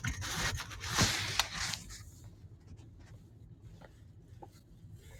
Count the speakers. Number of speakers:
0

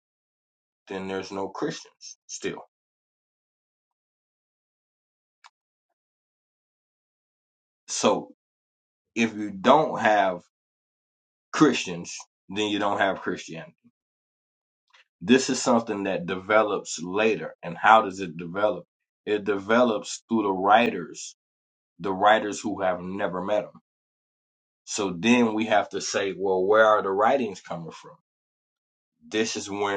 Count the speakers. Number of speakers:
1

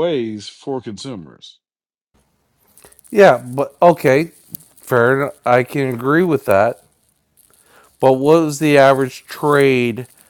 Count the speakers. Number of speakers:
2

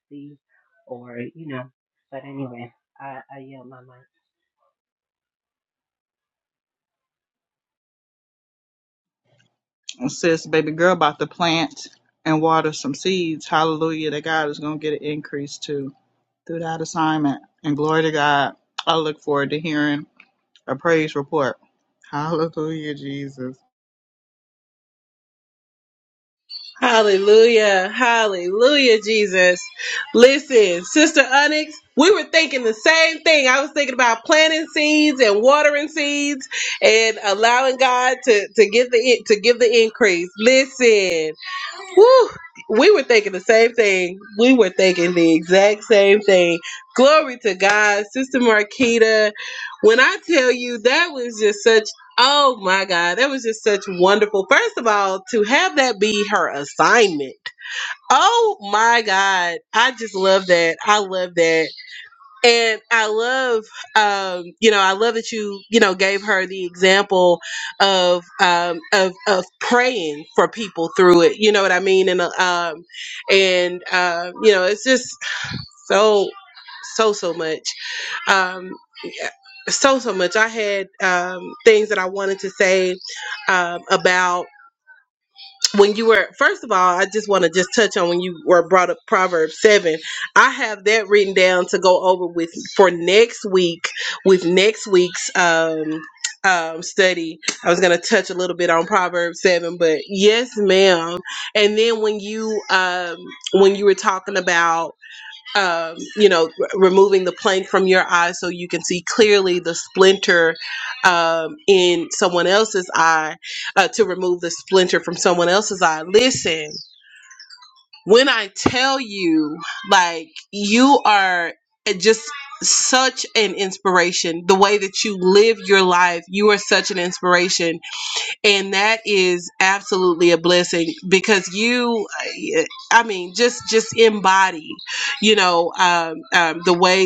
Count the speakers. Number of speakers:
3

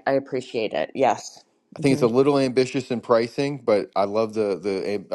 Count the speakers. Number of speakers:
2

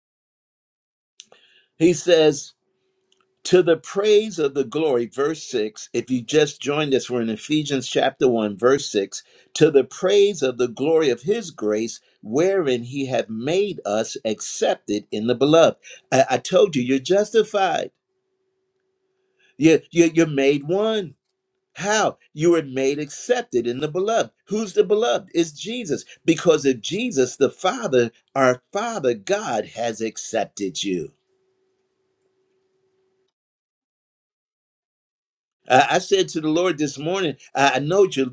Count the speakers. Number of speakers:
1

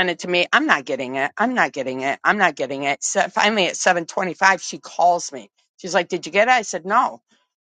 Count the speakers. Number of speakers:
1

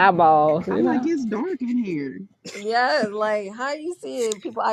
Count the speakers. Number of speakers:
3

